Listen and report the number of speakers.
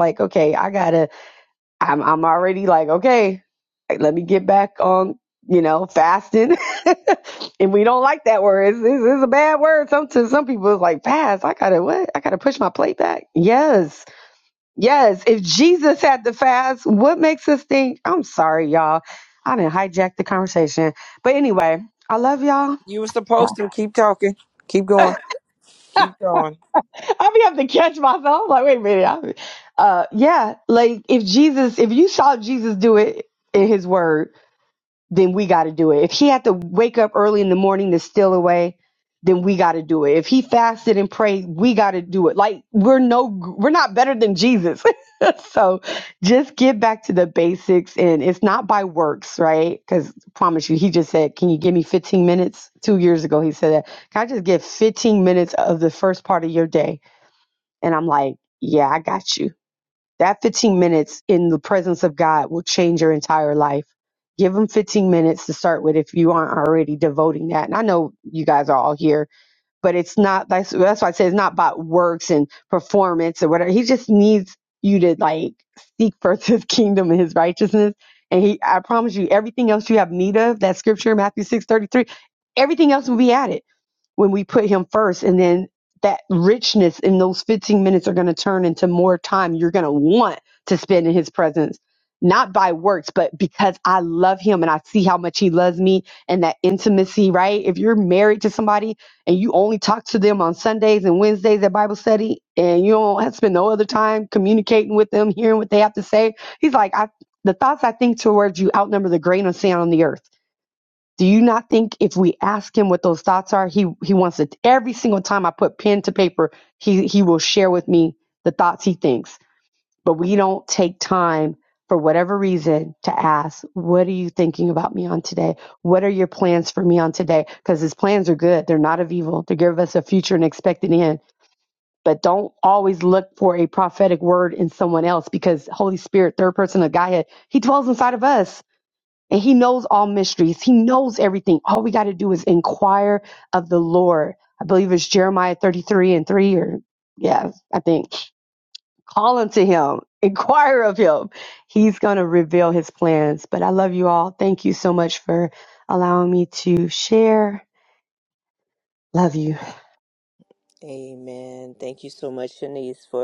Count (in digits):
3